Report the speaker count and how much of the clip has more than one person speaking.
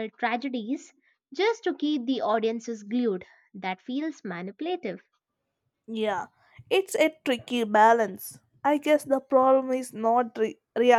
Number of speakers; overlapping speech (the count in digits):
2, no overlap